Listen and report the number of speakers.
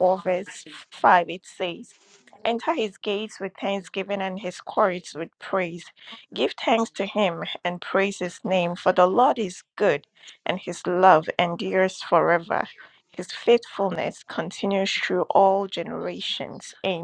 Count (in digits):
1